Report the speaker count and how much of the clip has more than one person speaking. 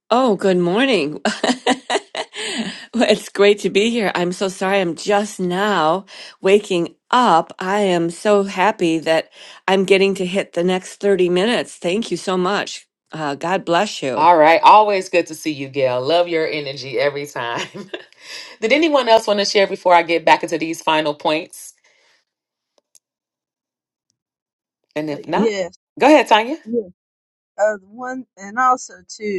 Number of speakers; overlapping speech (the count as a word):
three, about 2%